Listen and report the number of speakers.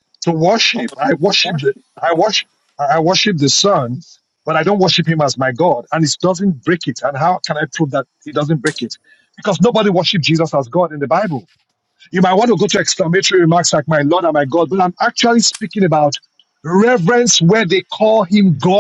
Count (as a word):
one